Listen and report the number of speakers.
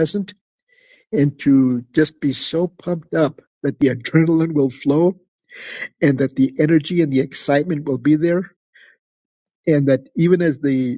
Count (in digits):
1